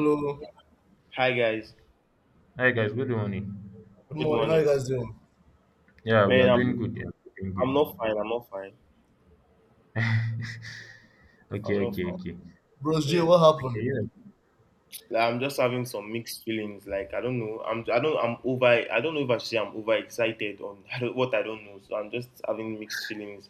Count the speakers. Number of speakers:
three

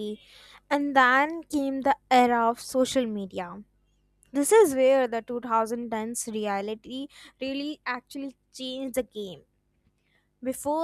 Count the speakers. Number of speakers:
one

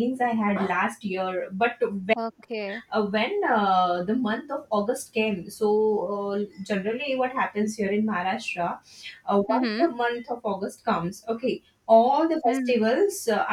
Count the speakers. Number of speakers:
two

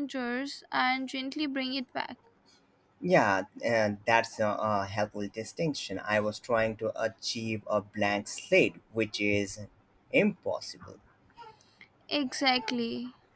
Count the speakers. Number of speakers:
two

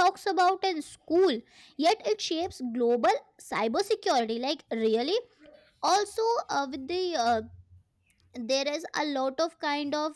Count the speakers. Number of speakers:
one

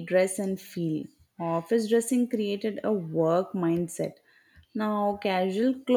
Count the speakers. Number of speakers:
one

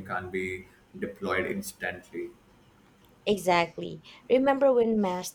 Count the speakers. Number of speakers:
two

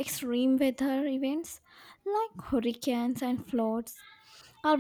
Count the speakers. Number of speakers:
one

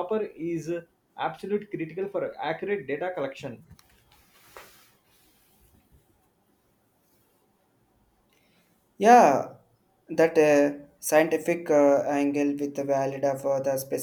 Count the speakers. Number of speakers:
two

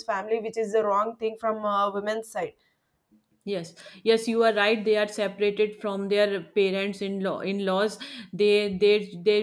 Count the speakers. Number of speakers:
two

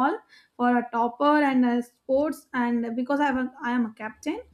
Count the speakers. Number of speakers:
one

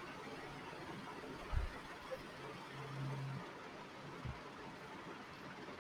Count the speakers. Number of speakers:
zero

